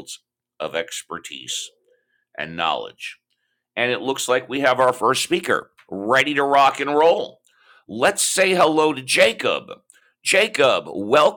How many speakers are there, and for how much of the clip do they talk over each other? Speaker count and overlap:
one, no overlap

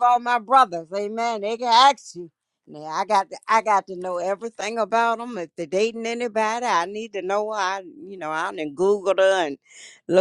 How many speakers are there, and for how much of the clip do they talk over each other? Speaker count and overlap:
one, no overlap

